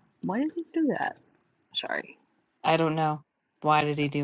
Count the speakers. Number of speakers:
two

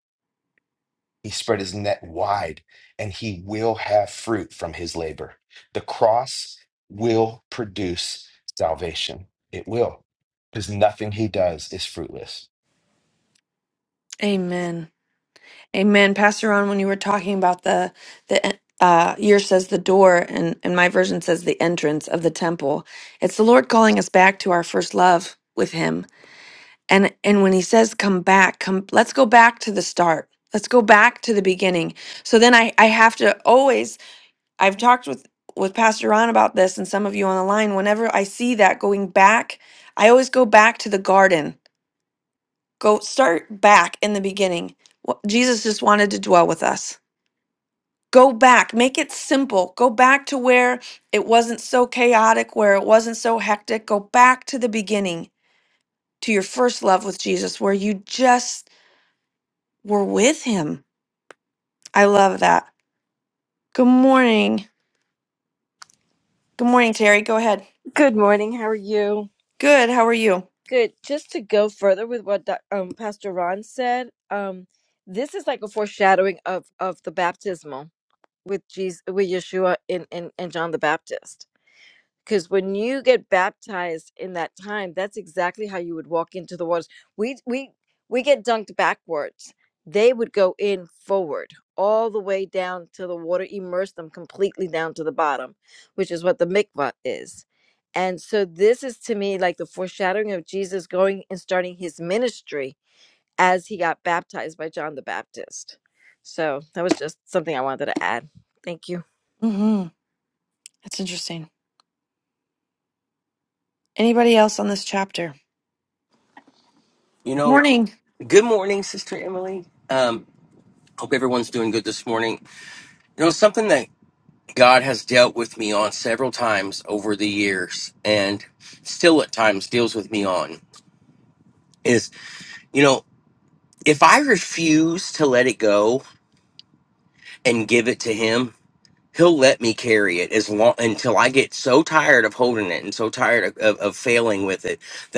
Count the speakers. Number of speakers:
four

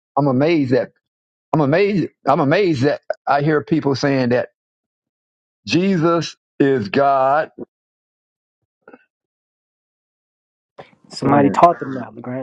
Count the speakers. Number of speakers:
two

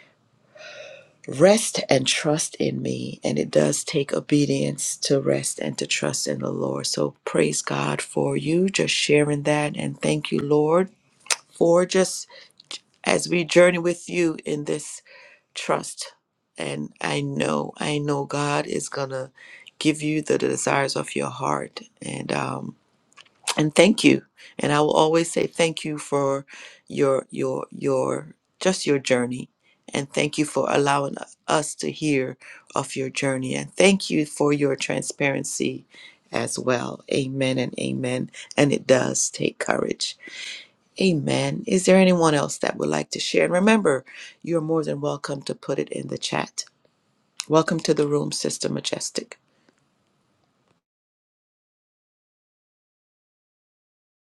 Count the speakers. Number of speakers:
one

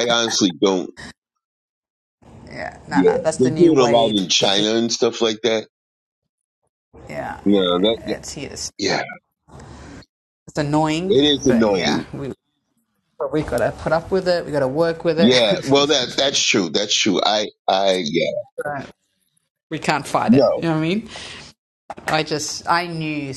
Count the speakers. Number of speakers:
two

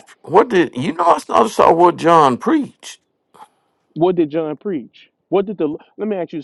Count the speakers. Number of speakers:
two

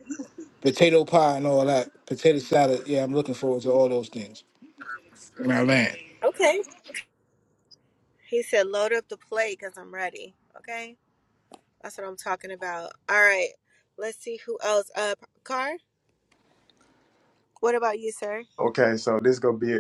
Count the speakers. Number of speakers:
three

